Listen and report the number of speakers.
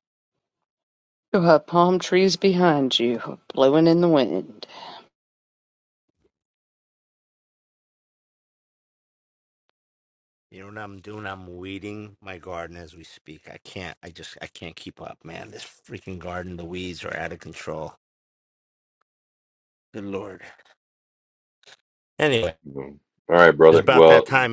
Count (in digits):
3